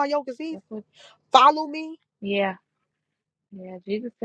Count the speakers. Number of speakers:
two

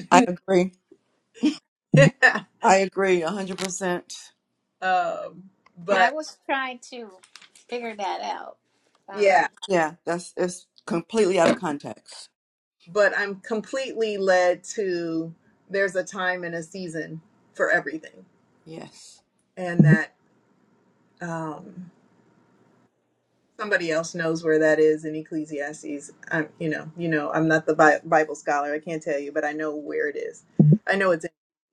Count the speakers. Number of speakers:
three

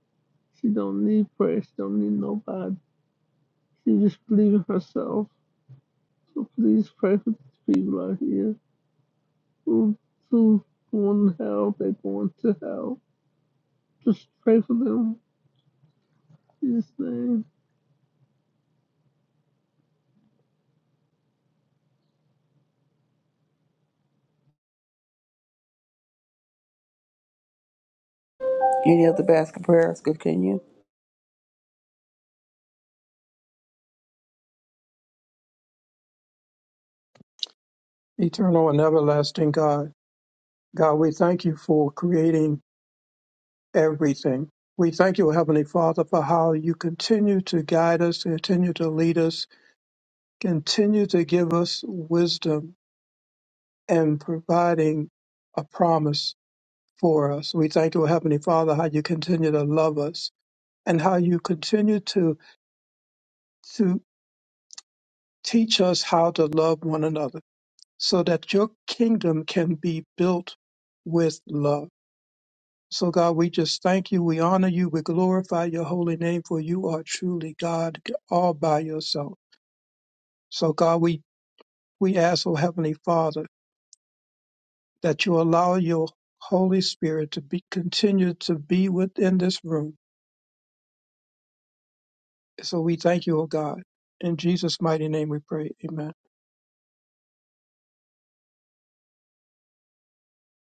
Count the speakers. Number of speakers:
three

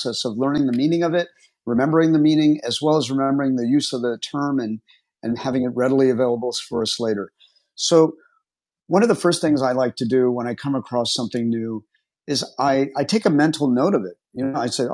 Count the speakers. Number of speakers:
one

